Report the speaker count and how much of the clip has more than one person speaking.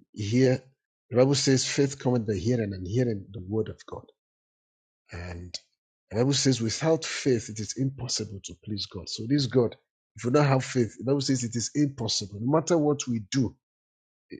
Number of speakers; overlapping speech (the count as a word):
one, no overlap